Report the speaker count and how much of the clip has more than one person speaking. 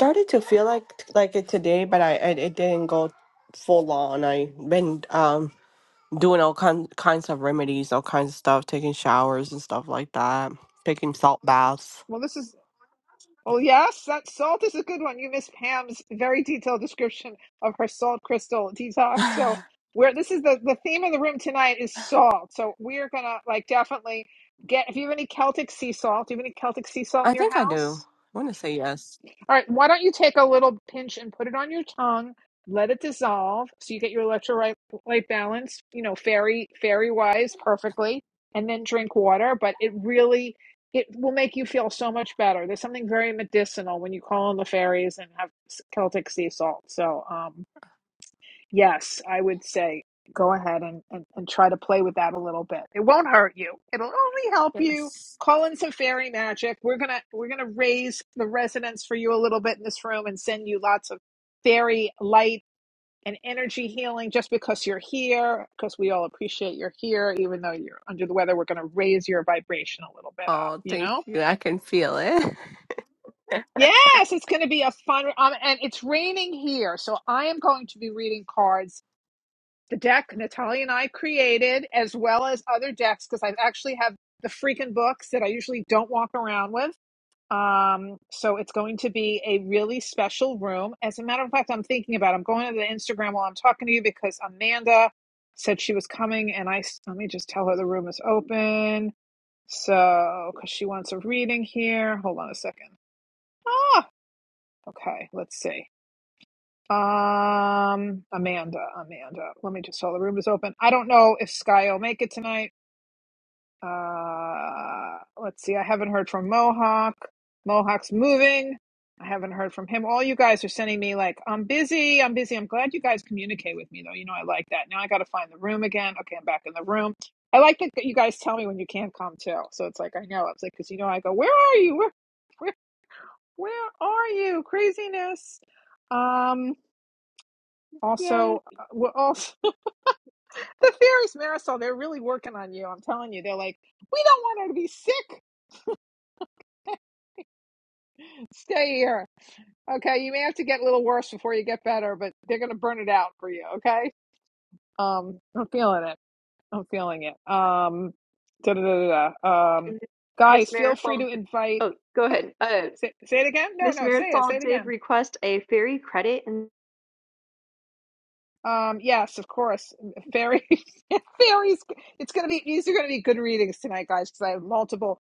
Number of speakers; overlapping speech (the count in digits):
3, about 2%